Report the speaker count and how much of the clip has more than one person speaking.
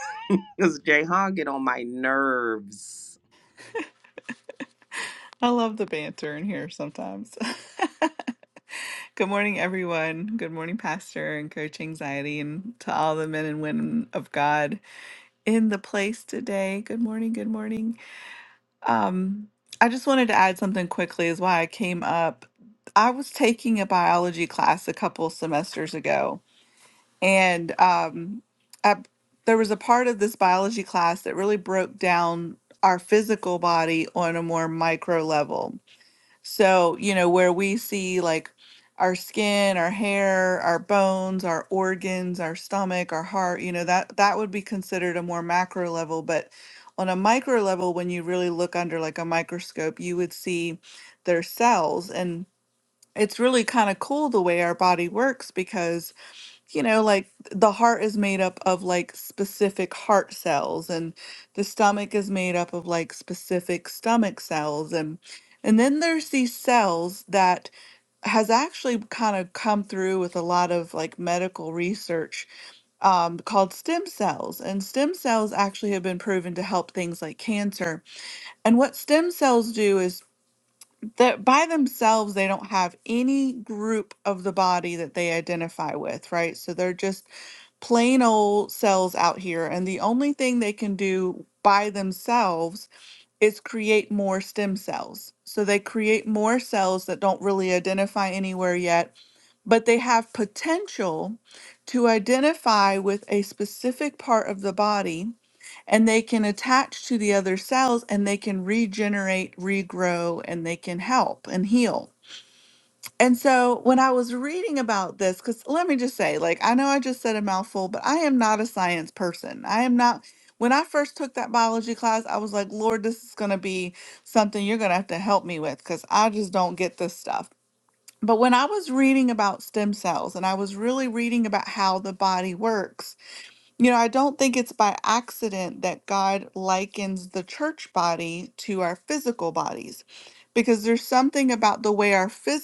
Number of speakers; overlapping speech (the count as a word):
two, no overlap